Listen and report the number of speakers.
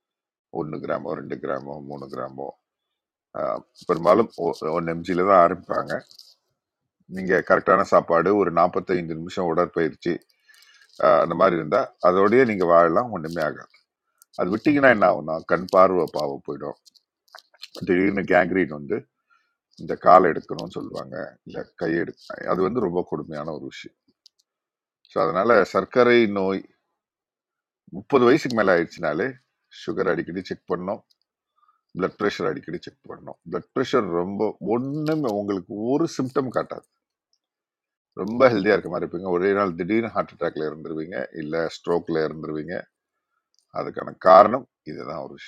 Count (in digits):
1